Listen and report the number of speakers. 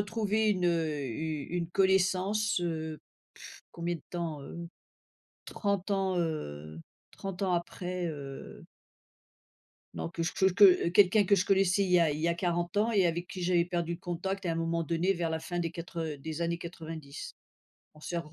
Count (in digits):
1